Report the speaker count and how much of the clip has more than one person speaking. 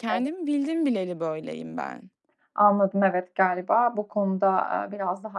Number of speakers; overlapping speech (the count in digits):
2, about 4%